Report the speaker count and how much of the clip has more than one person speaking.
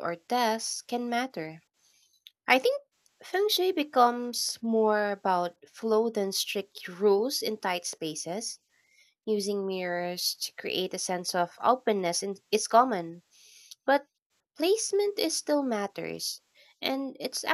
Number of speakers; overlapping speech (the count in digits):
1, no overlap